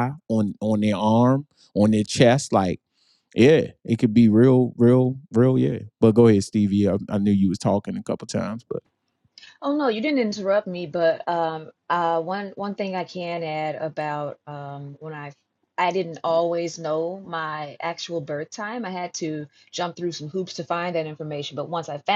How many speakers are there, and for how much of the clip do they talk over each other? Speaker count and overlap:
two, no overlap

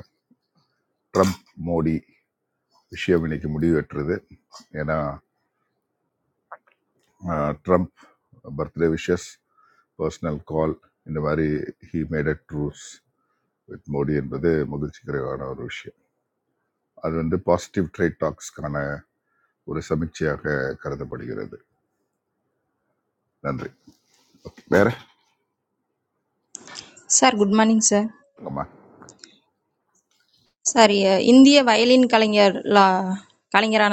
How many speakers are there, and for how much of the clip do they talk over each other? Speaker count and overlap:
two, no overlap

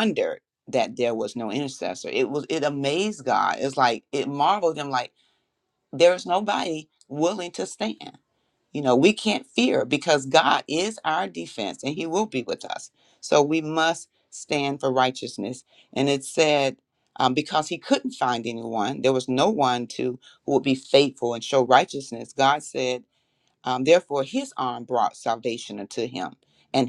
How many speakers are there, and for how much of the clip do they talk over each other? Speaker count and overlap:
one, no overlap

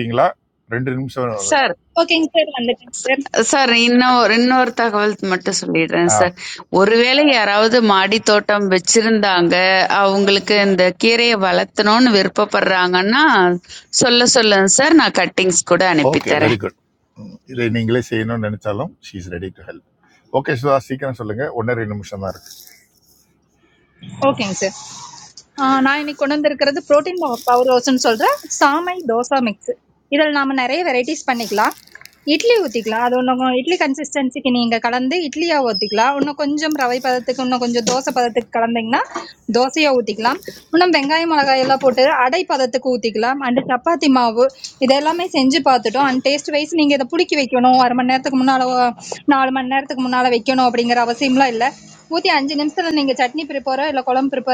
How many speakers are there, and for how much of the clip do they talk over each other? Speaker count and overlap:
three, about 1%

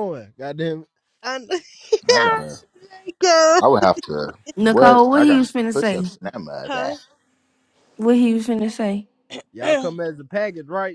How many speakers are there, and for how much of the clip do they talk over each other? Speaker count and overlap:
four, about 21%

